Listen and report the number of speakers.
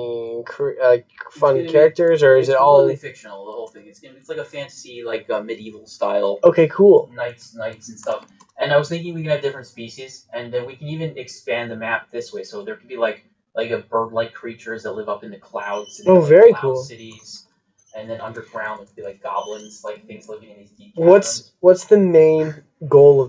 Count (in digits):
2